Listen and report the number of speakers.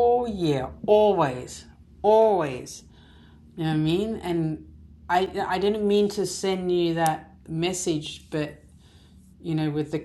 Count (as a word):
one